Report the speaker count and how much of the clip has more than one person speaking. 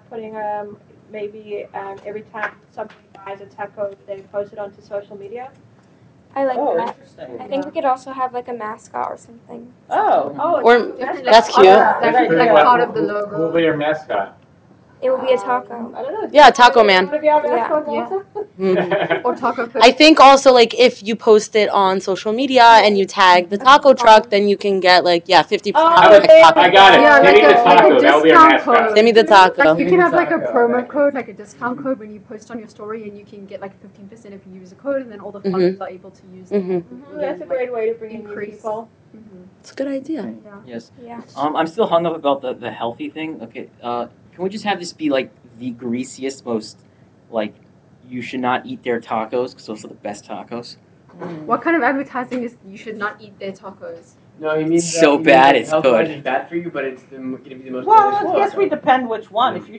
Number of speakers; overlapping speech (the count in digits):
8, about 33%